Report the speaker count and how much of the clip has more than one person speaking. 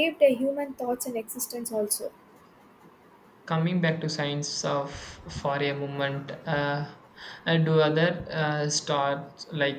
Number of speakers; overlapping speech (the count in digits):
2, no overlap